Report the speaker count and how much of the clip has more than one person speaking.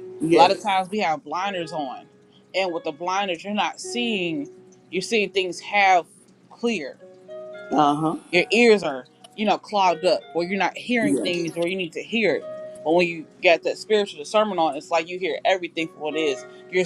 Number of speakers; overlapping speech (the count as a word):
two, about 4%